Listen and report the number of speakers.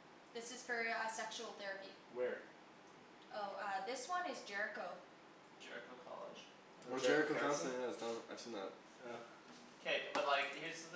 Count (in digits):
4